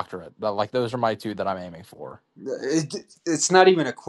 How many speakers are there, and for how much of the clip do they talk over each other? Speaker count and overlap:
two, no overlap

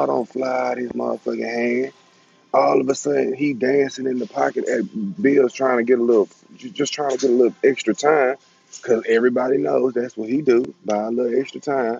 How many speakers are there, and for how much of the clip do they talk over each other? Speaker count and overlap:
one, no overlap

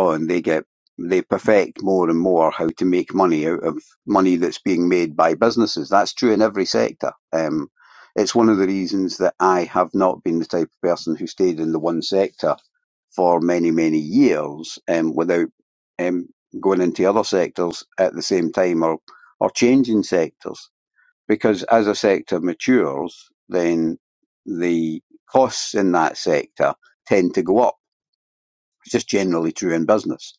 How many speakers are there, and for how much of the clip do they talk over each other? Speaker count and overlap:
one, no overlap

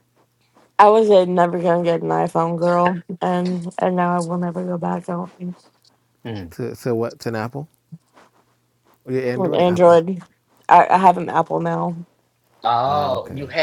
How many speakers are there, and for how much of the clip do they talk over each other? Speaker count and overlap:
three, about 9%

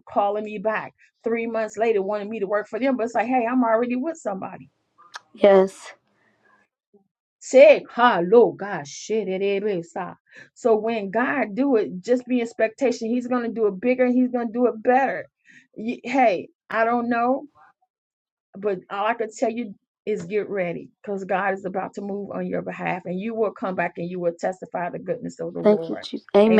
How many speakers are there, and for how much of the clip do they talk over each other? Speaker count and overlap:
two, about 2%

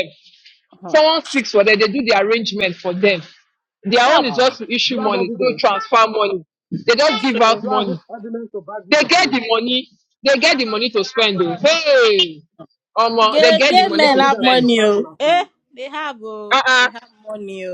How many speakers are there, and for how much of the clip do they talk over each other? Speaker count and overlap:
three, about 30%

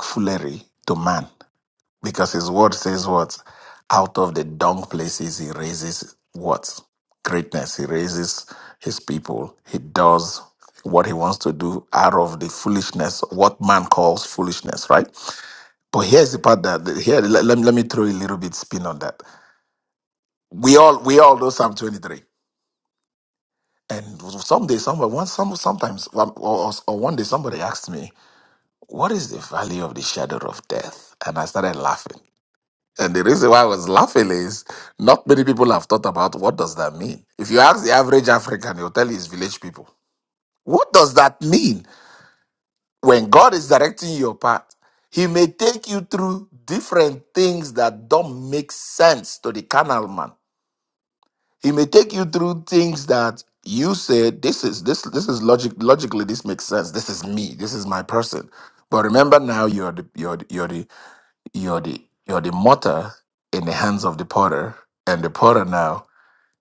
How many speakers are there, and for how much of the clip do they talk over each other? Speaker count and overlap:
one, no overlap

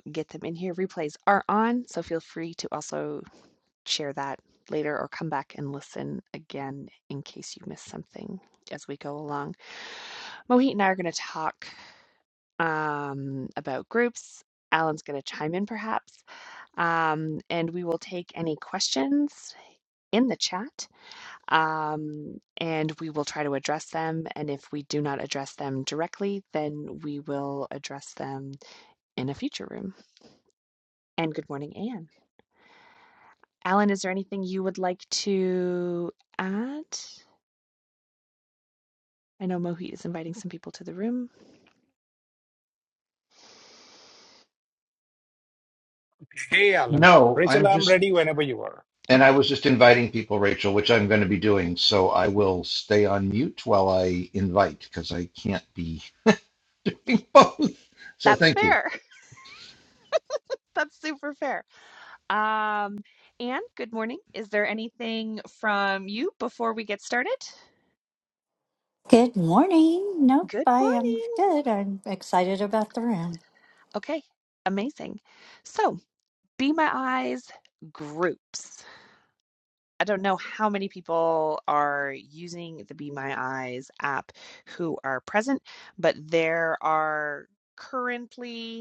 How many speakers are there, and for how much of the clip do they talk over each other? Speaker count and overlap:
four, about 3%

